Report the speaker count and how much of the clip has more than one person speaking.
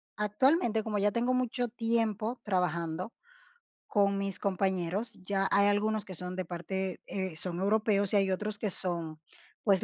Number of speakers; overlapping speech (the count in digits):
1, no overlap